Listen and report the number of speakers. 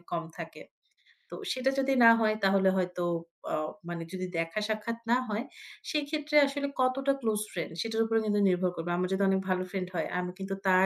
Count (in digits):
1